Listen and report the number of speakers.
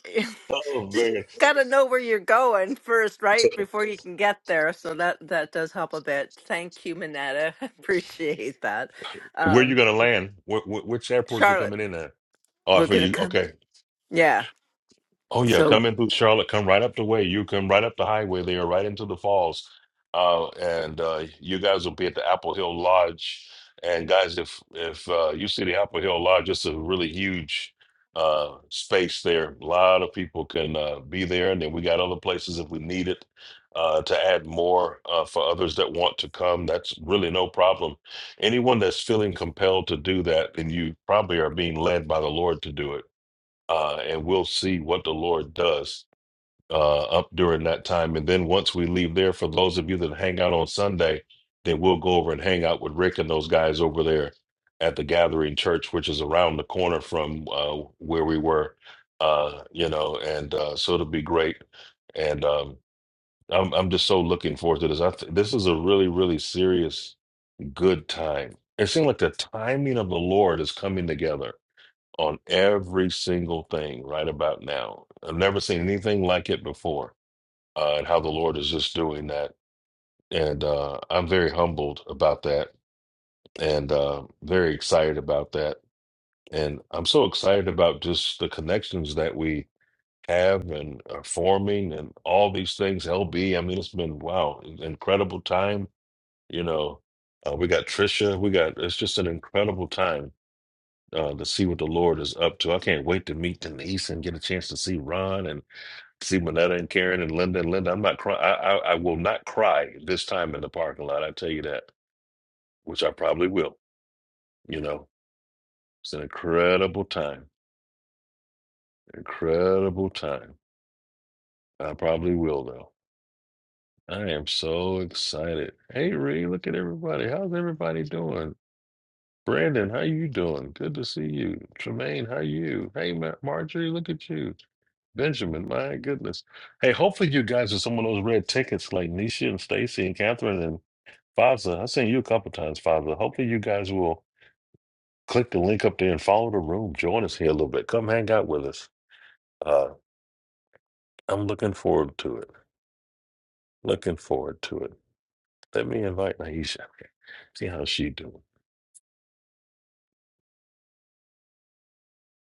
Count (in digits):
2